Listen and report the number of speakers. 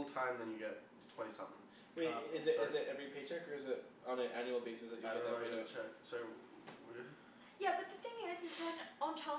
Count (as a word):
three